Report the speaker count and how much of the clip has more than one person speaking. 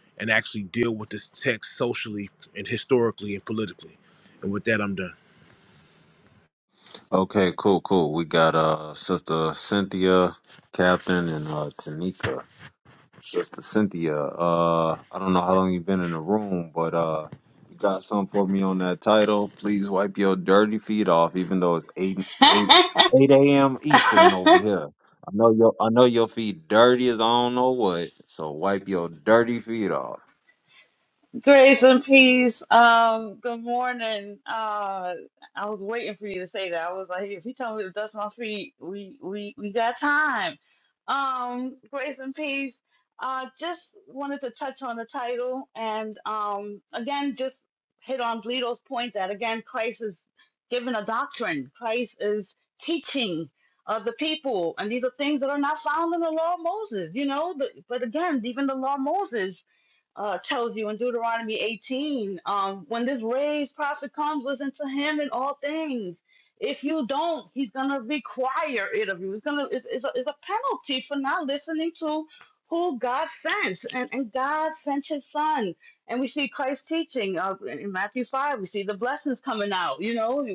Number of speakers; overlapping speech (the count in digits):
3, no overlap